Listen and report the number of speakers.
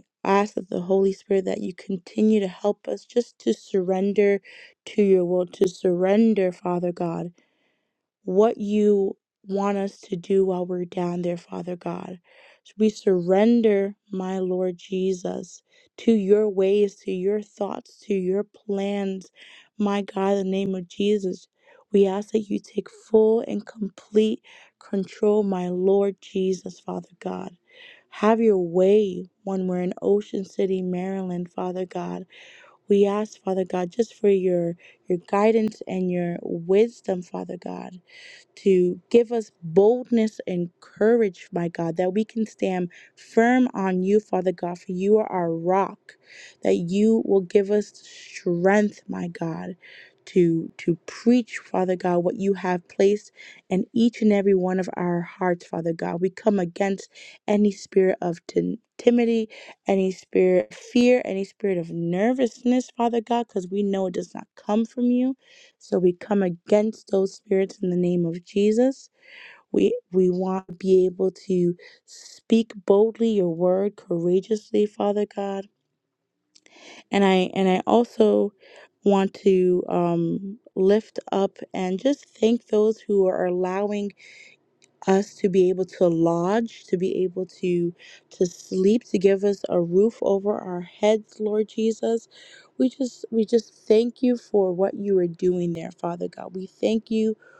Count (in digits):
1